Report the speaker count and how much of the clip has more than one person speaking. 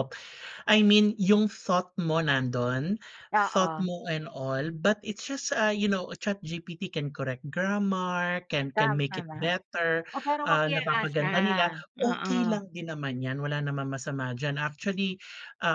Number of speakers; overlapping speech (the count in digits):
2, about 16%